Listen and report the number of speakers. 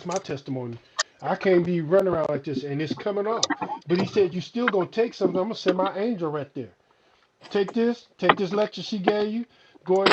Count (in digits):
1